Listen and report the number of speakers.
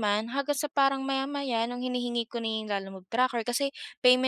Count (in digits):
1